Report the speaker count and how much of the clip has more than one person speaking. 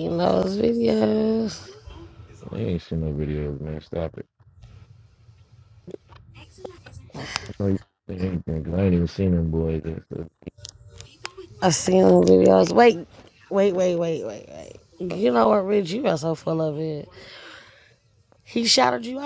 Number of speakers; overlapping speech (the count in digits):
2, no overlap